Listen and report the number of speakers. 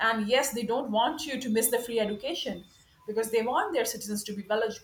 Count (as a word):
one